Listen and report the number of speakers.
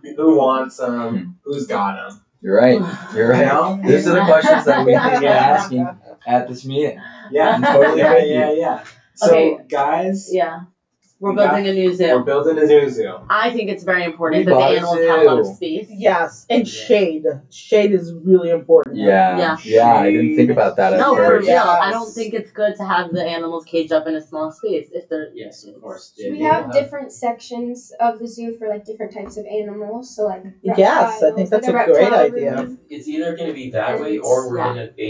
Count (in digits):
6